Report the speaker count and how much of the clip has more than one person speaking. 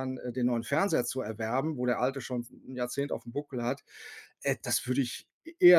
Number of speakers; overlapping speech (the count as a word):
one, no overlap